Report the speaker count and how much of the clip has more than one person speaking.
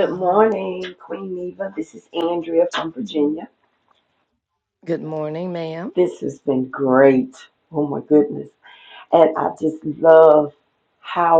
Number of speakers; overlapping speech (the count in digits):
2, about 3%